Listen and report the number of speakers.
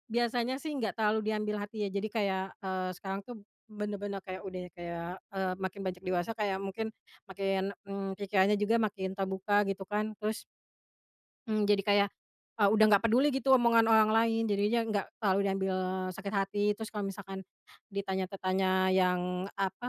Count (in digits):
1